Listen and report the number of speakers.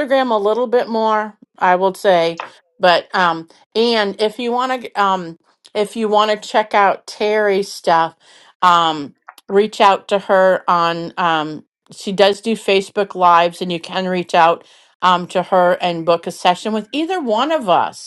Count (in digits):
1